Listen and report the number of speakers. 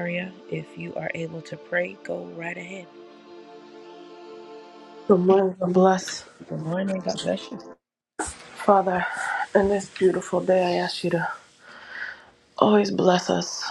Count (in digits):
2